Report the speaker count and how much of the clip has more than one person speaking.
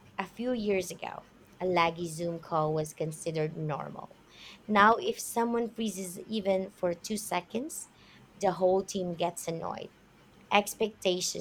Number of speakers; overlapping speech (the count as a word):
one, no overlap